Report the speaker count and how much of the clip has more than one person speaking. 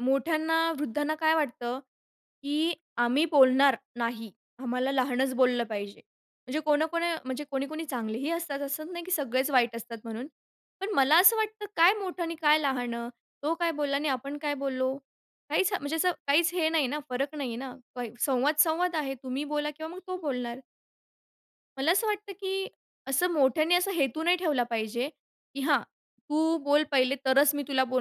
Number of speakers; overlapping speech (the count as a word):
one, no overlap